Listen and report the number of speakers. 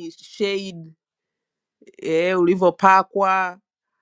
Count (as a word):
one